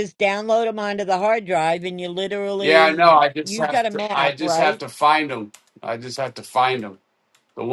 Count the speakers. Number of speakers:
2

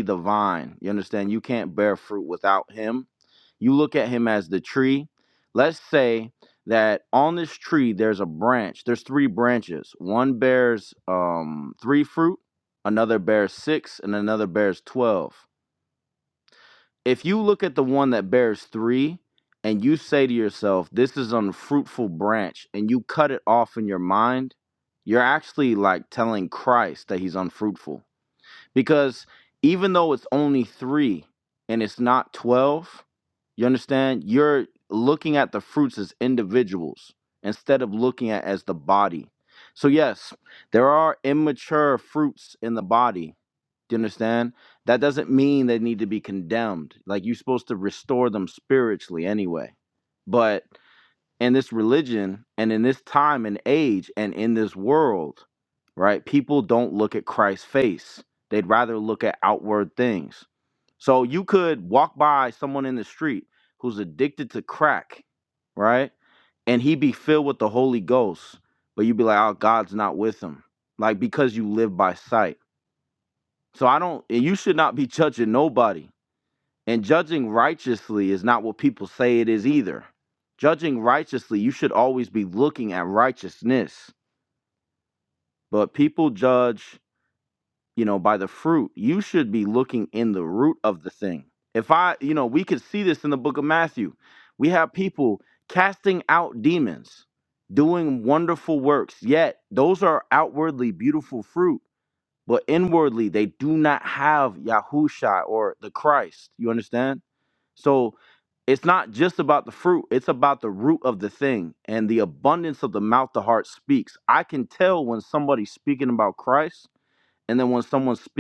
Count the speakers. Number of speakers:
1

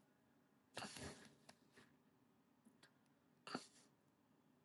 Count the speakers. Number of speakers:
0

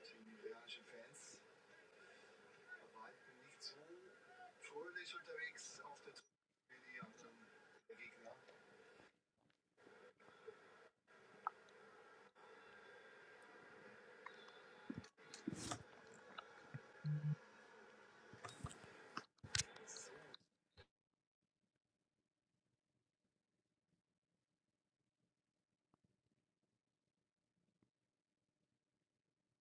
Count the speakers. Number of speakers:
0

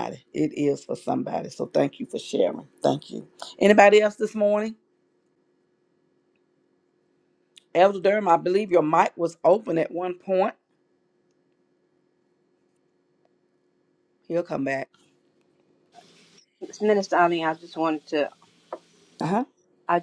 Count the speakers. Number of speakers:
2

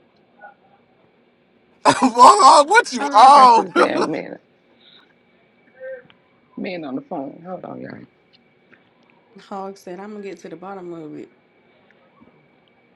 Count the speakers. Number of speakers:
3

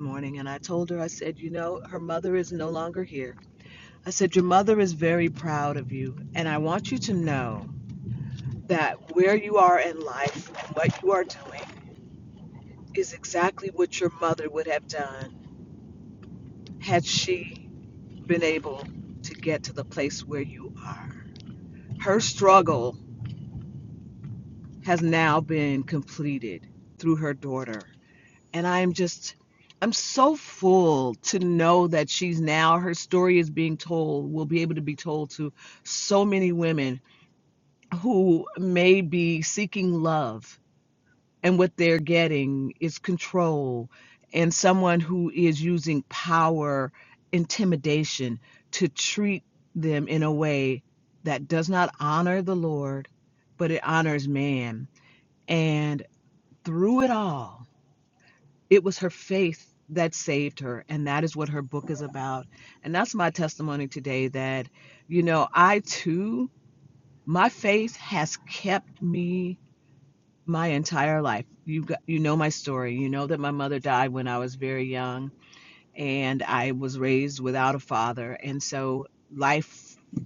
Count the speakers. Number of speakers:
1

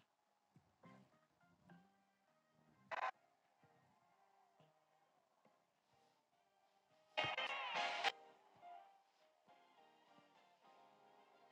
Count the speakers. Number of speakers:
0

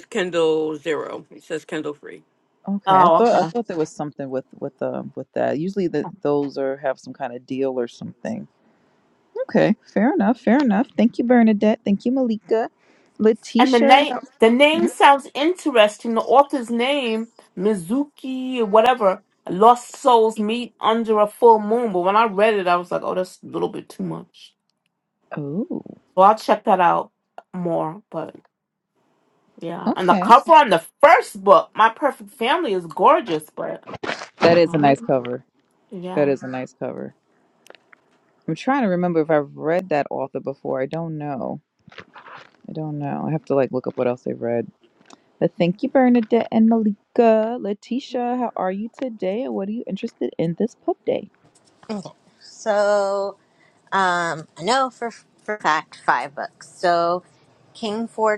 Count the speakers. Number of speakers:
4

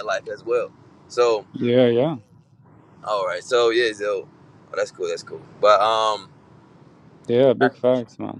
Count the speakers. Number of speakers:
2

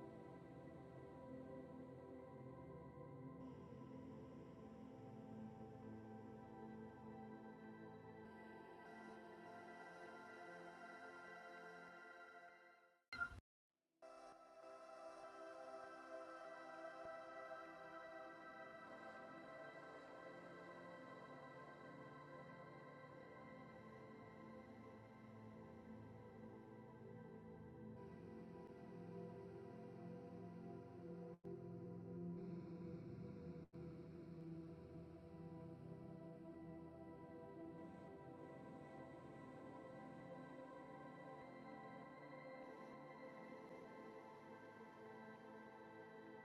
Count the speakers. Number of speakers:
0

